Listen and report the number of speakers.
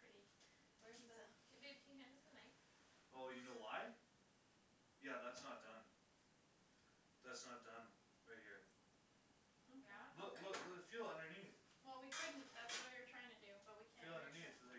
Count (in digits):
3